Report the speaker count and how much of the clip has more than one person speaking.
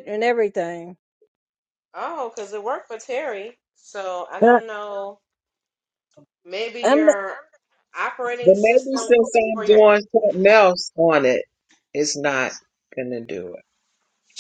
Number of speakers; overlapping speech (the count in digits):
3, about 10%